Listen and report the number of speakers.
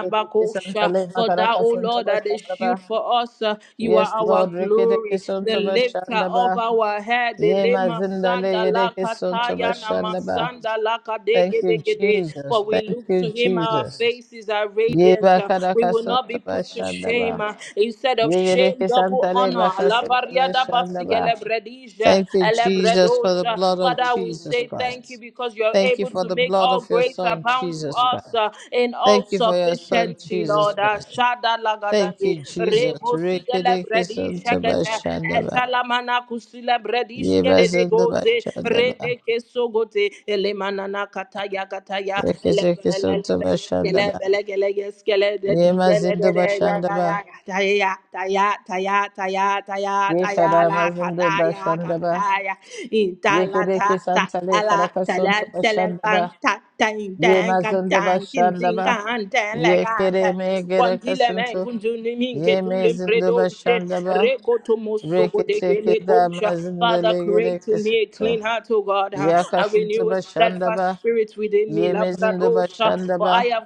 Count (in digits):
2